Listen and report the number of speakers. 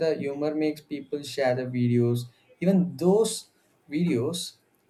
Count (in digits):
1